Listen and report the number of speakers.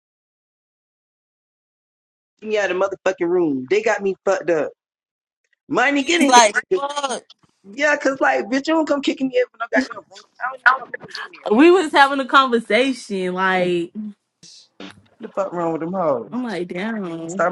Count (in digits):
2